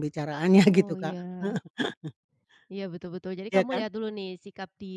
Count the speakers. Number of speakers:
two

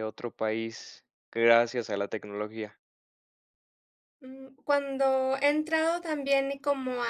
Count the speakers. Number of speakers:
two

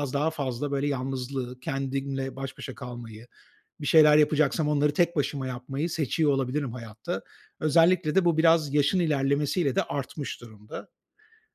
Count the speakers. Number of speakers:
one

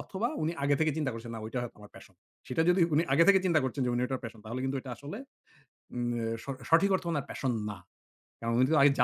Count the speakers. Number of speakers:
one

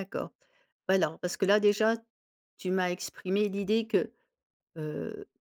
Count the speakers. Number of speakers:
one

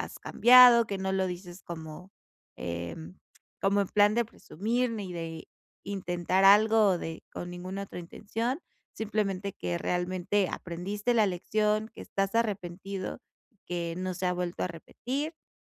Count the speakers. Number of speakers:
one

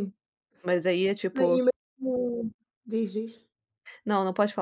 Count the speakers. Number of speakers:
two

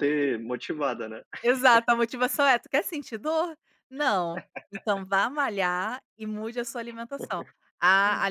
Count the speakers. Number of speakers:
two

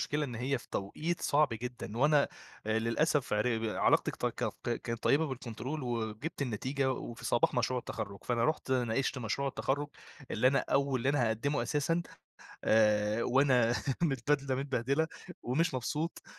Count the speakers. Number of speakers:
one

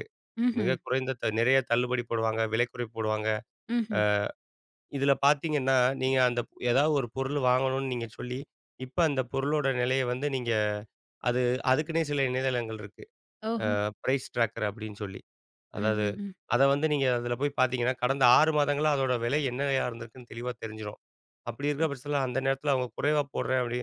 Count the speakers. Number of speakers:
two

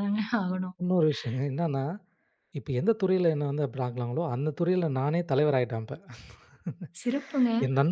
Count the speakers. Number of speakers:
two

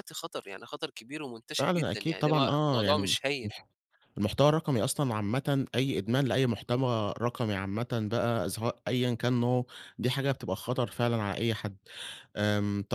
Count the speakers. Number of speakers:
two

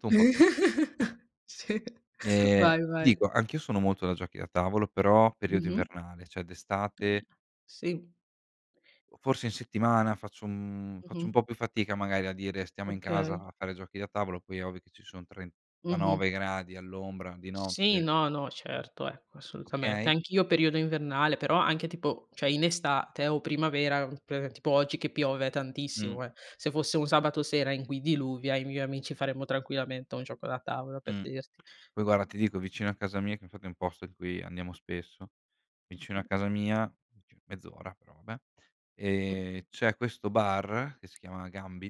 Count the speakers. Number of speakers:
two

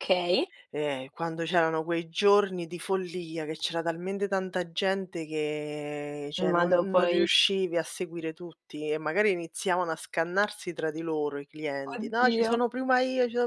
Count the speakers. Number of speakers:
two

